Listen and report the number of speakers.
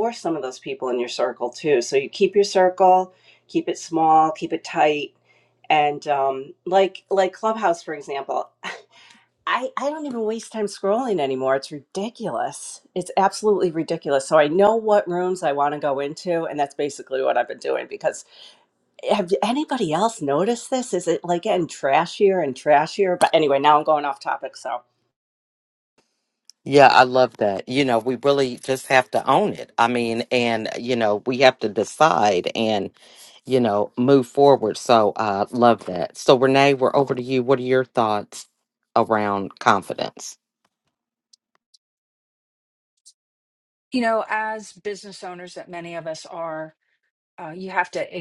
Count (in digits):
3